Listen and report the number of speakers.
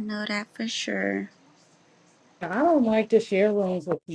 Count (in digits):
2